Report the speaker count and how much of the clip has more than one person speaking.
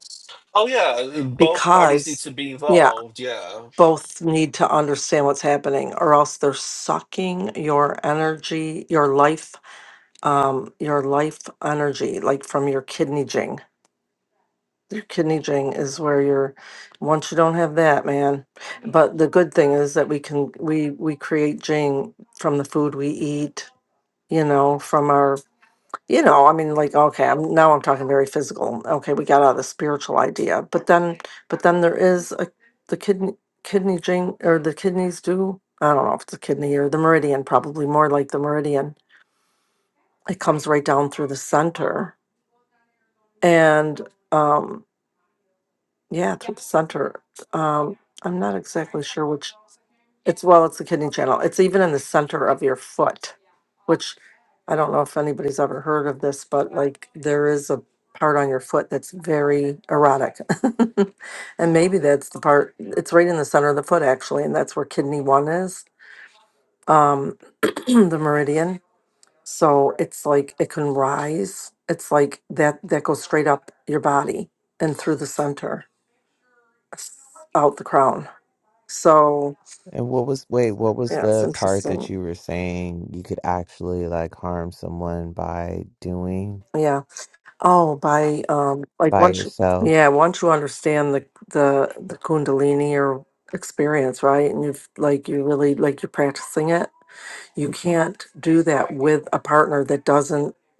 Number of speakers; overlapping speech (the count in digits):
3, about 2%